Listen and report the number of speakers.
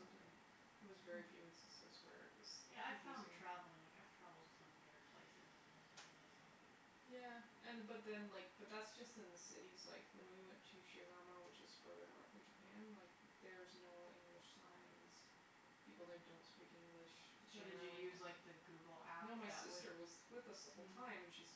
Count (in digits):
2